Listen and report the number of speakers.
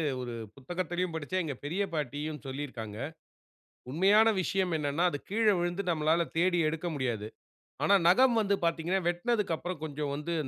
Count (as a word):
one